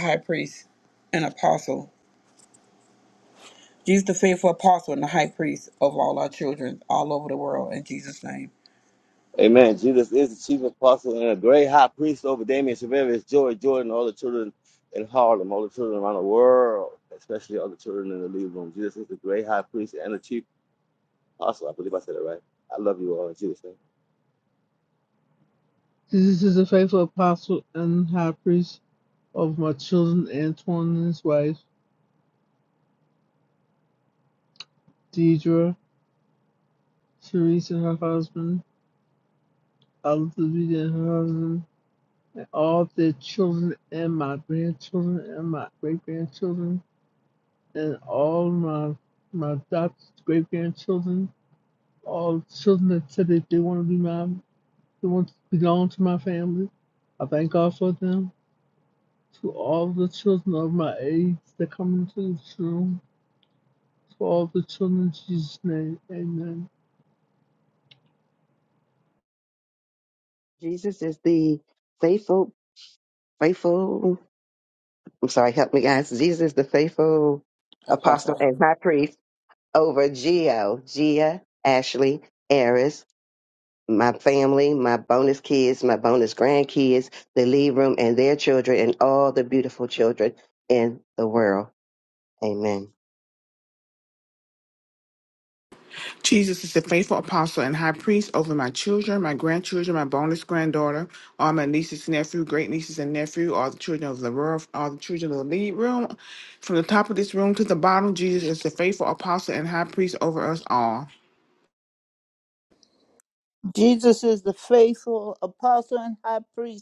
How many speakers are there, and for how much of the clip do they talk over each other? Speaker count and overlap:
6, under 1%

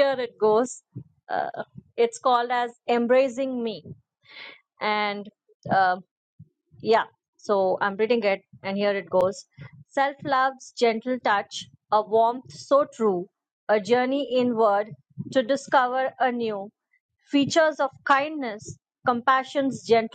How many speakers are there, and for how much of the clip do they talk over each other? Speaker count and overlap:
1, no overlap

